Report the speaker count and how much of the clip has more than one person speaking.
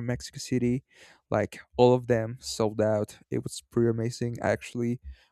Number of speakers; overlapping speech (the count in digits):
1, no overlap